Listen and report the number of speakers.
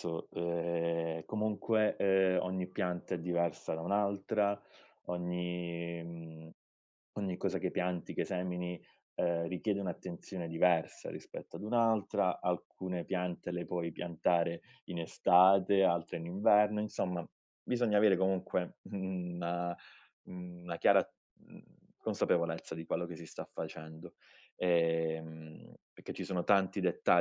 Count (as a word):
one